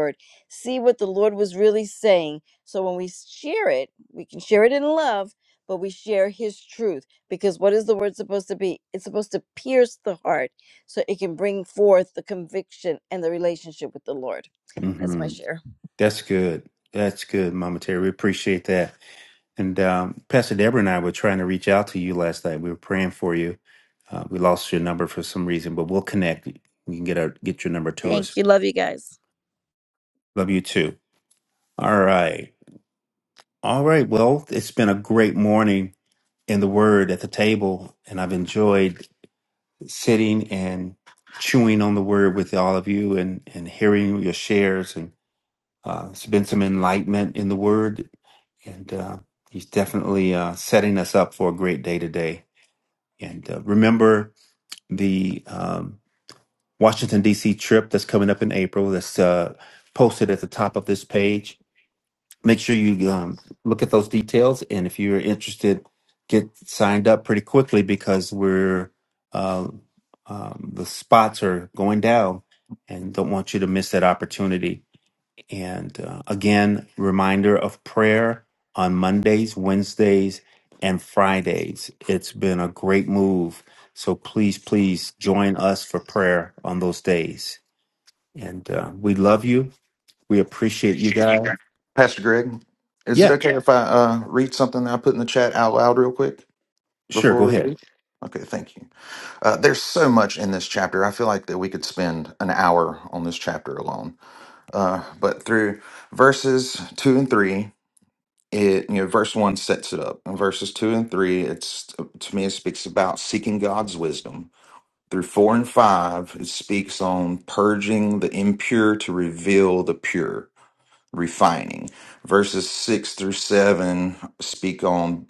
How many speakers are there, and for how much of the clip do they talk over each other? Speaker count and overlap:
3, about 1%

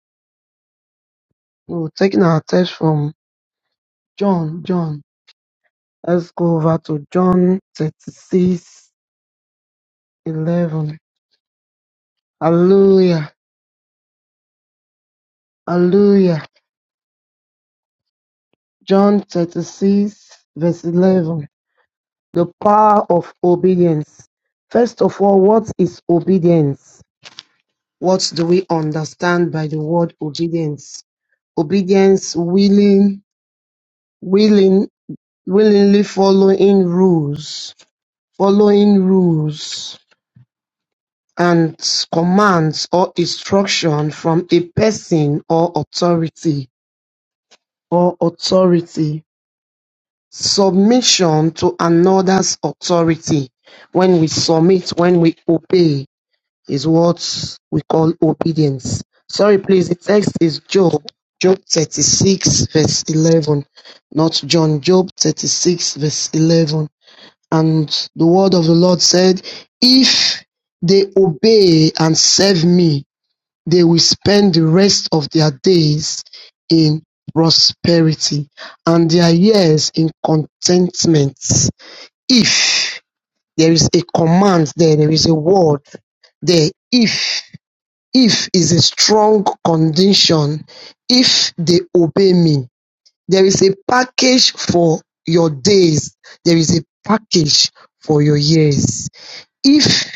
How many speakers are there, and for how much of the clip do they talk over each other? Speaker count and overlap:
1, no overlap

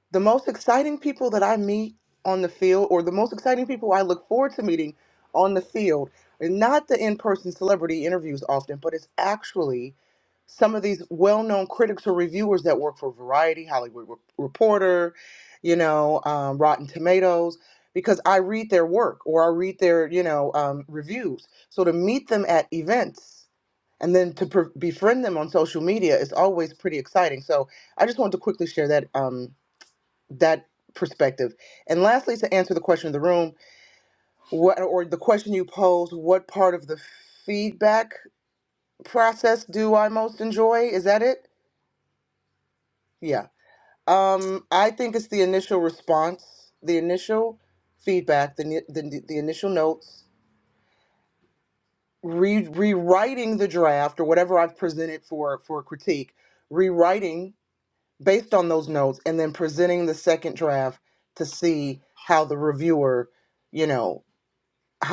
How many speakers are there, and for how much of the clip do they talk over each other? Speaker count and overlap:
1, no overlap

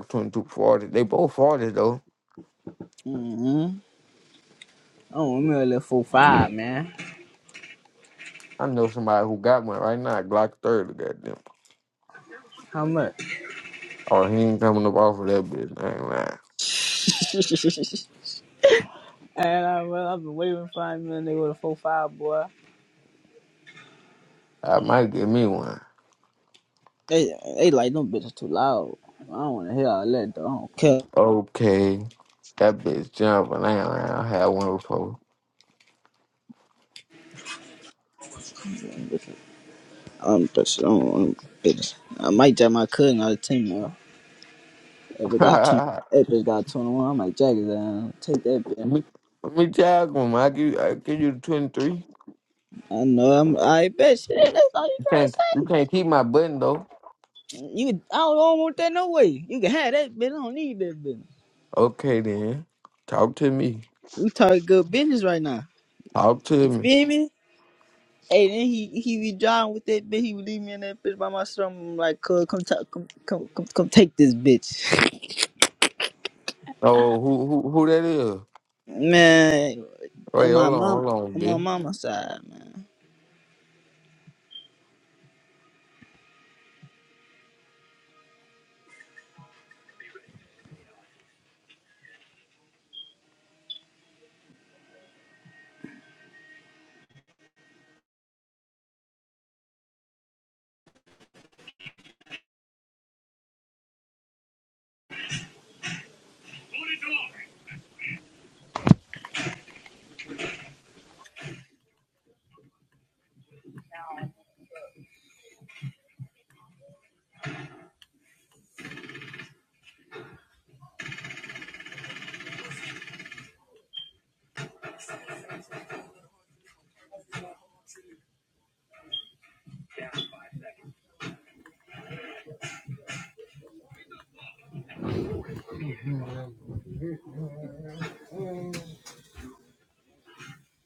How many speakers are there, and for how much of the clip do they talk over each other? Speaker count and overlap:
2, about 1%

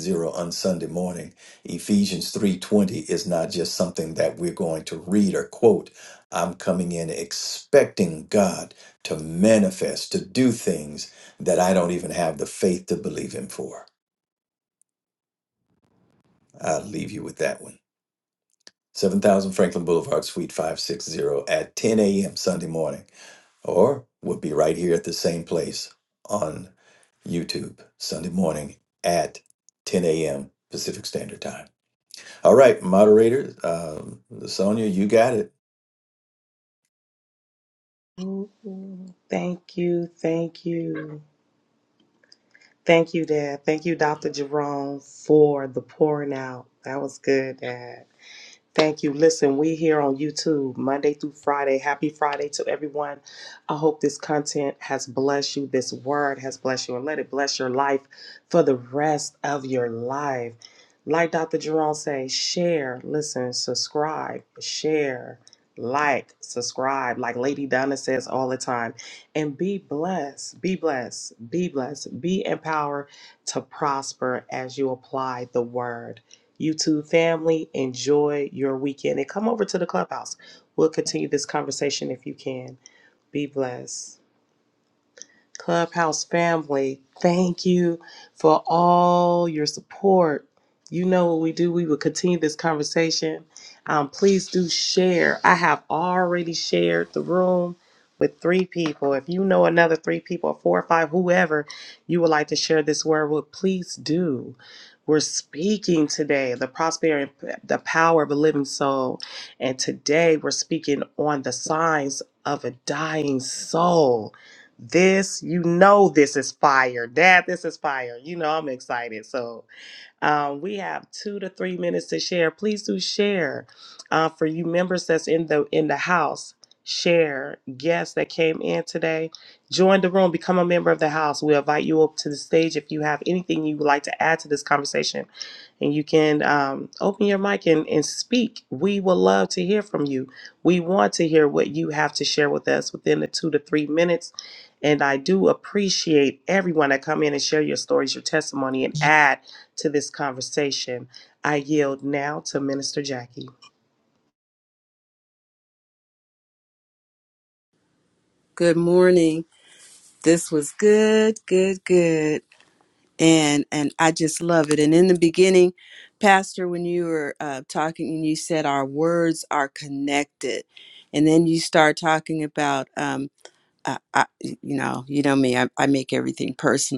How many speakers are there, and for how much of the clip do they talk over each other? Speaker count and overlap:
3, no overlap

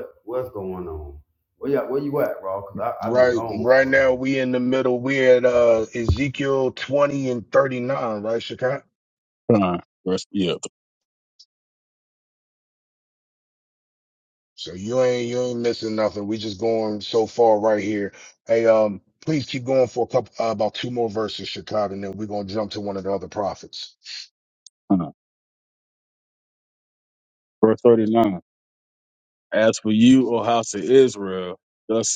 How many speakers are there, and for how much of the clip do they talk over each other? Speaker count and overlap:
3, about 3%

